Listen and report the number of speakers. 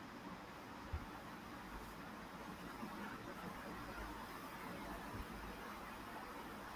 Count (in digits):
0